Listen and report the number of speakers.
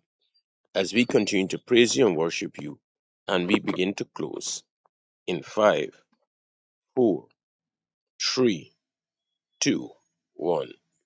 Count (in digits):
1